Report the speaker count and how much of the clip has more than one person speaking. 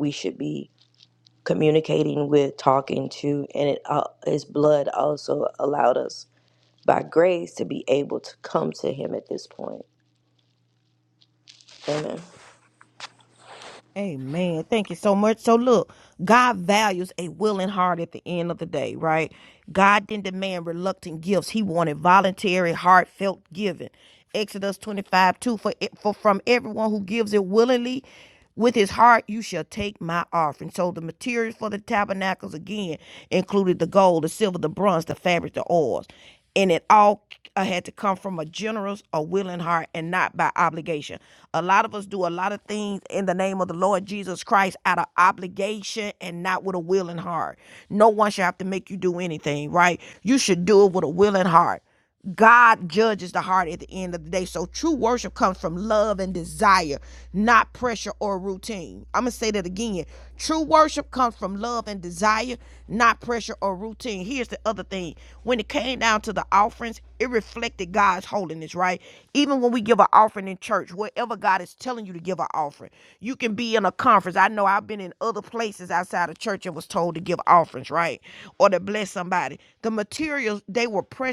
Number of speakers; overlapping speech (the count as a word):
two, no overlap